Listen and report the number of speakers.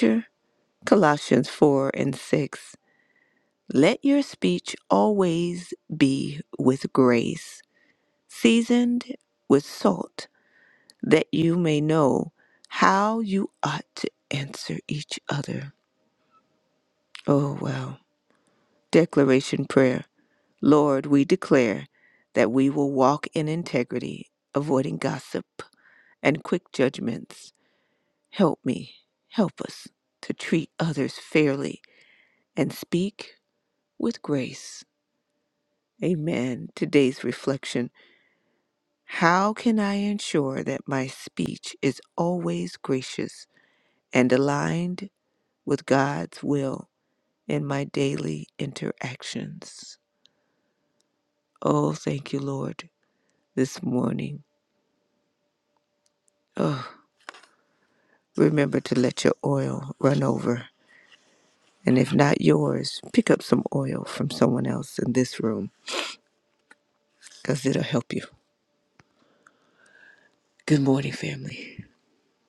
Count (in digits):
1